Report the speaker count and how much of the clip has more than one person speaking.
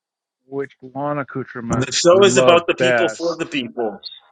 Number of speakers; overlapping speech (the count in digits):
2, about 34%